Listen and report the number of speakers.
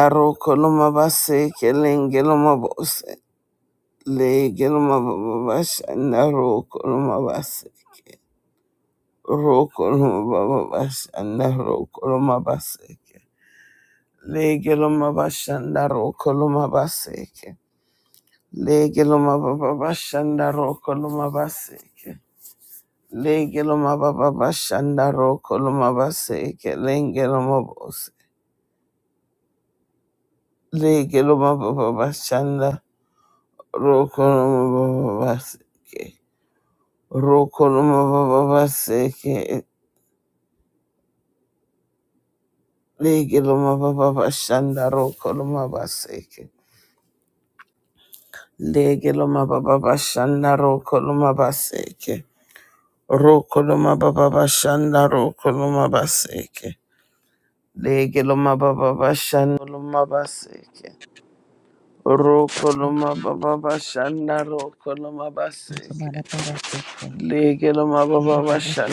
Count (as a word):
two